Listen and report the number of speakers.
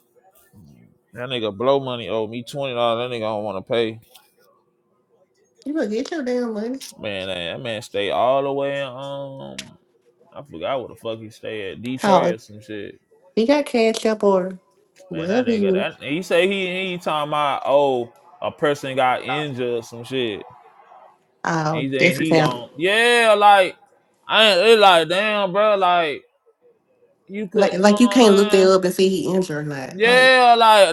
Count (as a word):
two